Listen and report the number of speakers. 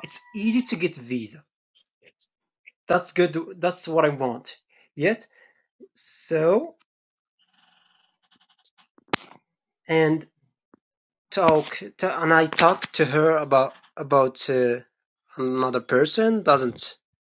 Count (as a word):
one